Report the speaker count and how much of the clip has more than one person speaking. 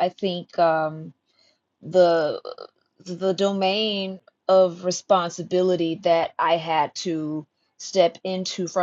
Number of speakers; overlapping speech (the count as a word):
one, no overlap